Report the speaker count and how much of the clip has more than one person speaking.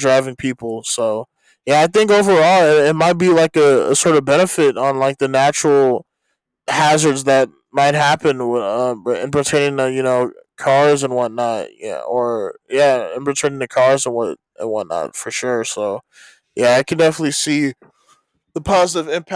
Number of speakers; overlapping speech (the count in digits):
1, no overlap